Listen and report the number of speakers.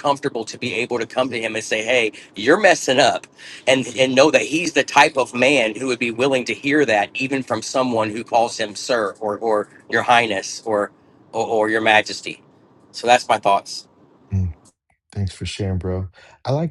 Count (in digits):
2